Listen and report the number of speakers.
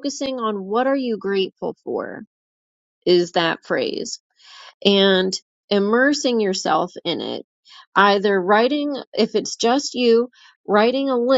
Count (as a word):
one